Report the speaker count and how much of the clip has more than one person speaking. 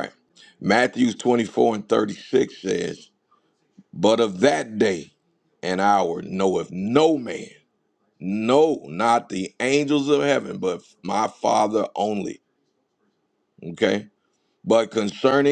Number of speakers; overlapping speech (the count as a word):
one, no overlap